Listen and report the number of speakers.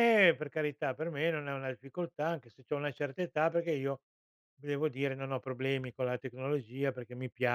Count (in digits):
1